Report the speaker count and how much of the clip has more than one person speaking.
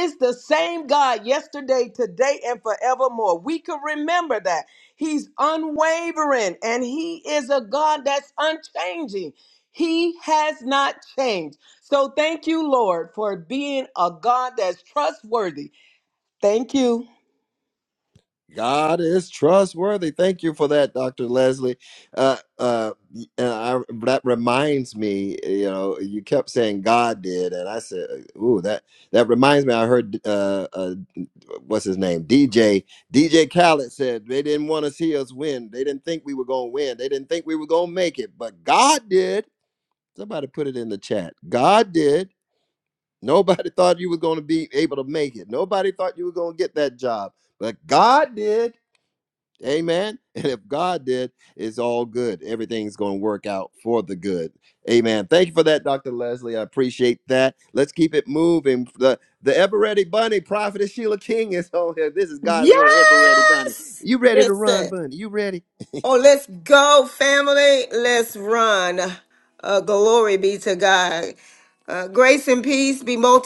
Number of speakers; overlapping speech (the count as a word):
three, about 2%